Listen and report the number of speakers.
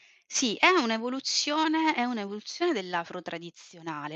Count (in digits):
1